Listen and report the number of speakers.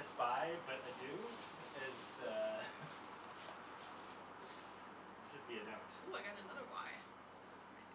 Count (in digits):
2